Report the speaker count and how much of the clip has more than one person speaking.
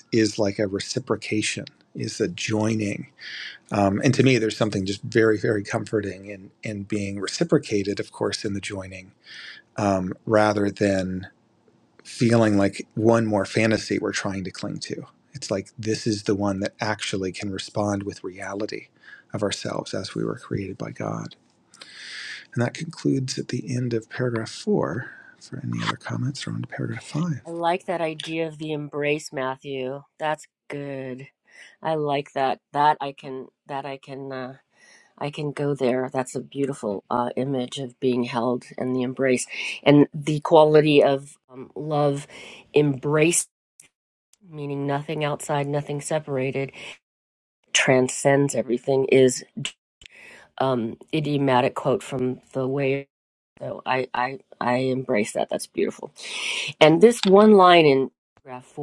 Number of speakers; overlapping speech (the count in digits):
2, no overlap